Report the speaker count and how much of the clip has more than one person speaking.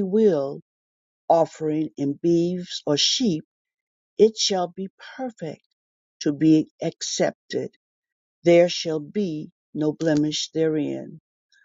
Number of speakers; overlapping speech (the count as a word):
one, no overlap